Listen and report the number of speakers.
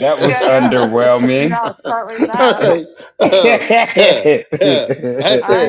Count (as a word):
three